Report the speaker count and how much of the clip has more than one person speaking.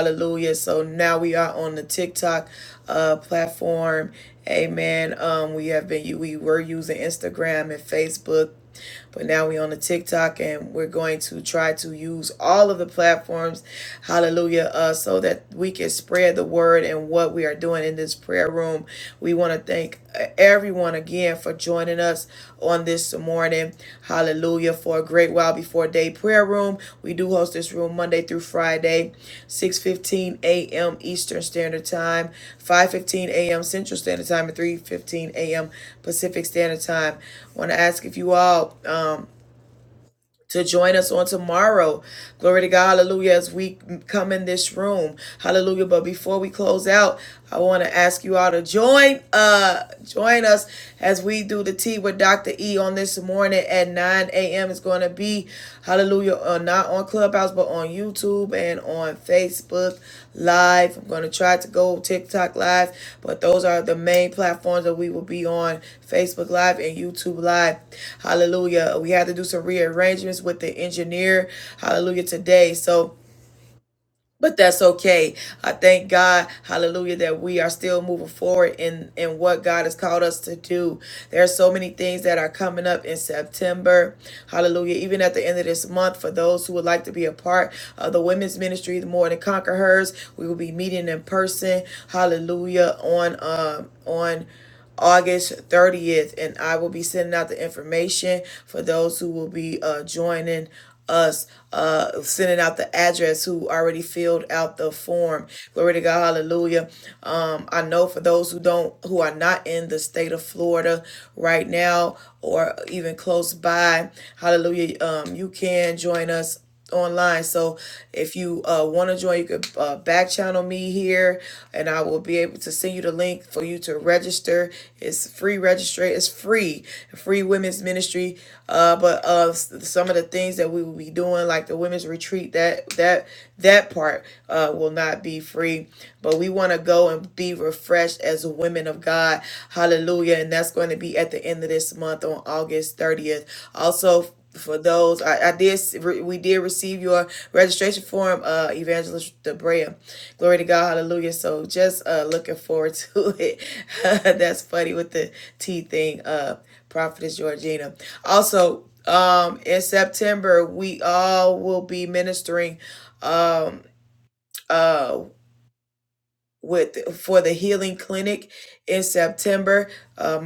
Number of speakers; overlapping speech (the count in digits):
1, no overlap